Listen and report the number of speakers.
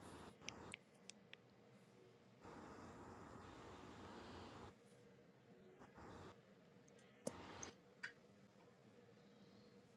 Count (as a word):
zero